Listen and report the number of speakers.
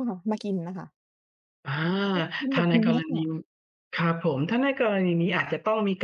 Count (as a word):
two